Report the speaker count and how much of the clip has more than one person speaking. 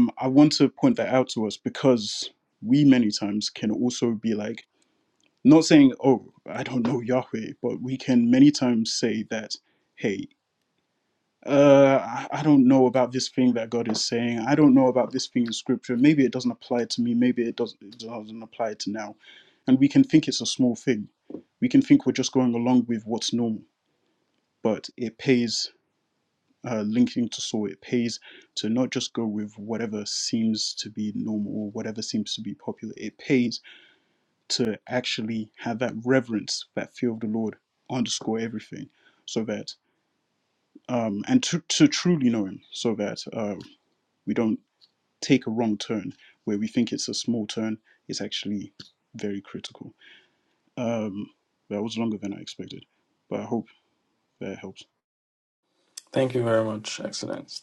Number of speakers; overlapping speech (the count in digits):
2, no overlap